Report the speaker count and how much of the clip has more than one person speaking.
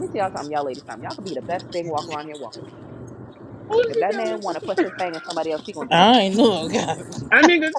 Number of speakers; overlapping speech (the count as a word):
three, about 14%